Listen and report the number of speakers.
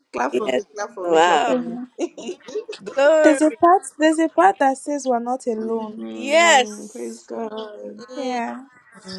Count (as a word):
three